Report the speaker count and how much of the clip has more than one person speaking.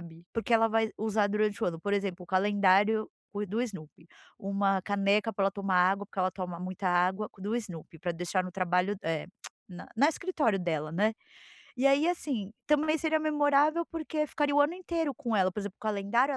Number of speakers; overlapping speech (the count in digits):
1, no overlap